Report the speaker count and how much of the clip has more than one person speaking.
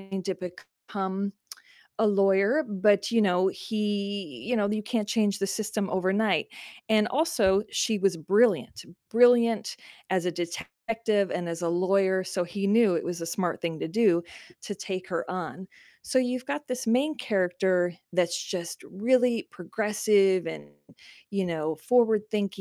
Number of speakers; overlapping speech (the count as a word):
one, no overlap